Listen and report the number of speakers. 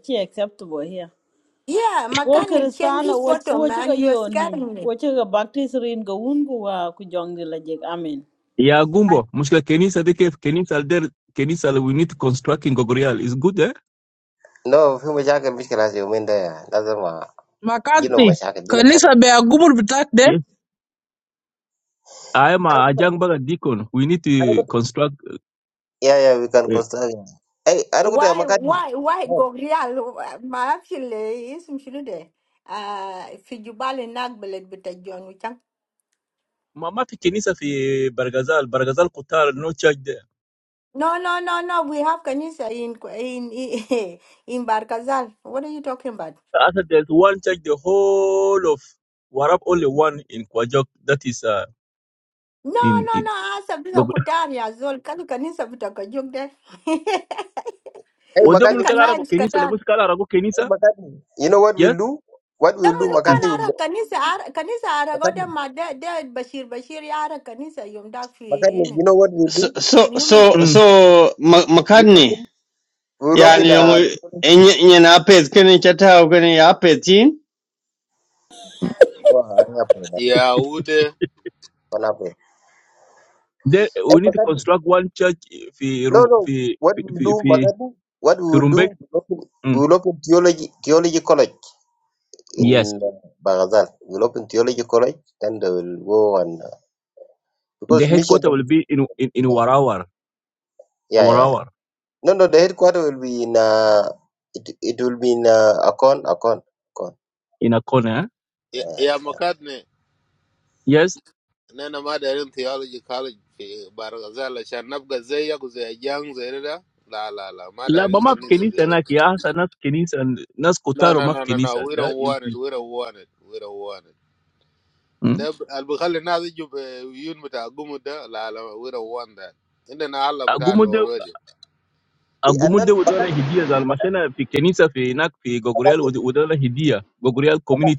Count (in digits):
7